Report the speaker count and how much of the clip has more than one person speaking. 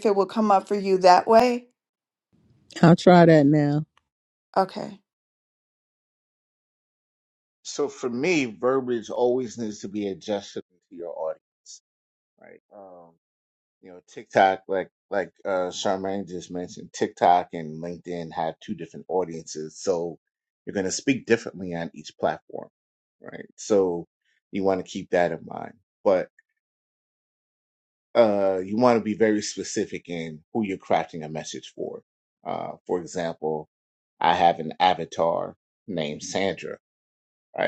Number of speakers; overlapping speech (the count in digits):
3, no overlap